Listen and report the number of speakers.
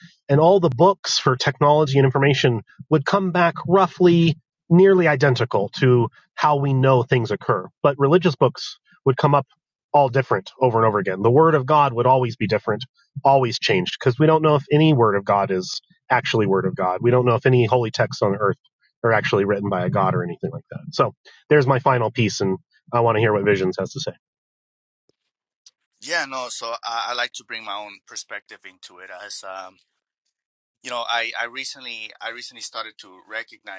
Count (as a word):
two